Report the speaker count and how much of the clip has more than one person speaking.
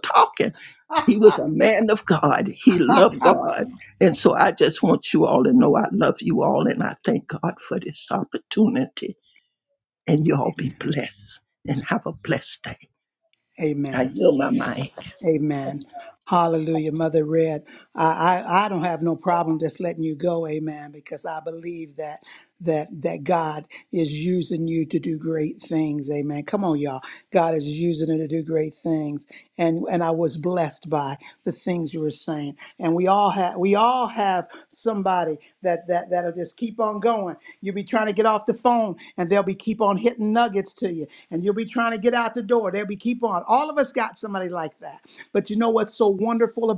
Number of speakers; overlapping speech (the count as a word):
two, under 1%